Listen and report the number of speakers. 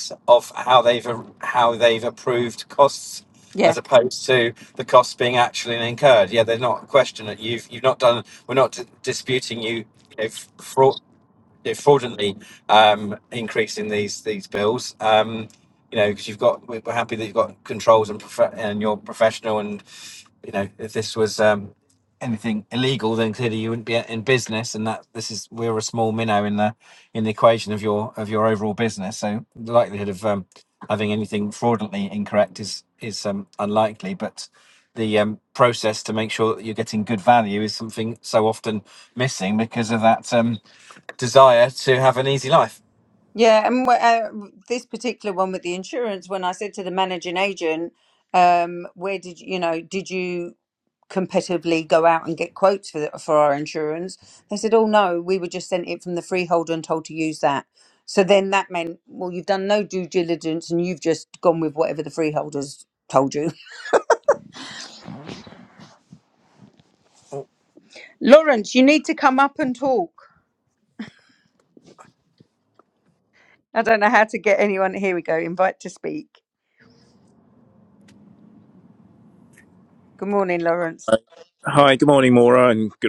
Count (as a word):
three